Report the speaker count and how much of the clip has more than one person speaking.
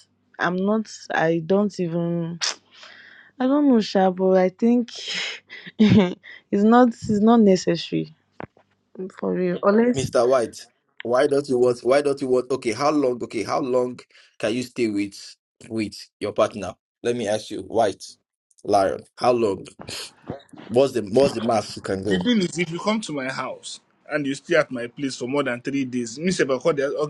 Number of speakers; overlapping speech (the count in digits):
3, about 1%